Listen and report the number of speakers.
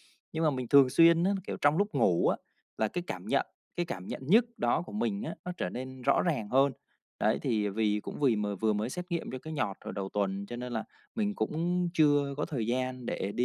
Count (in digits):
1